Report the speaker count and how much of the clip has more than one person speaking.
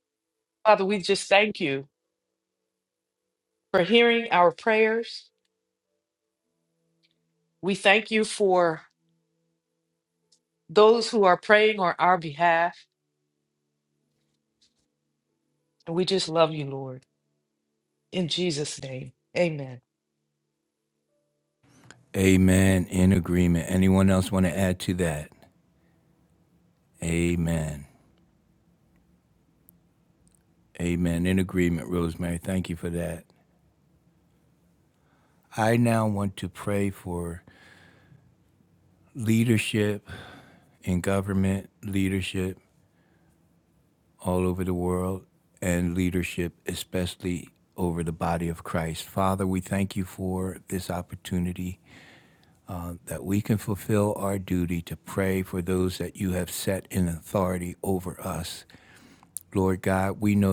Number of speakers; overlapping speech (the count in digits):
2, no overlap